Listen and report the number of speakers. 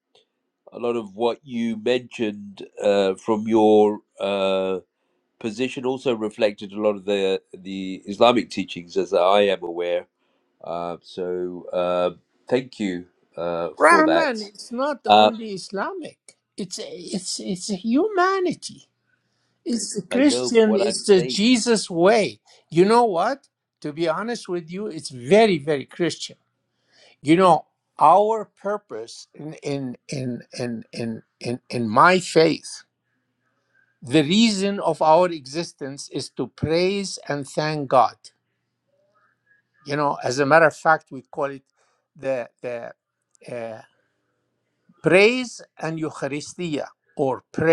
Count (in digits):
2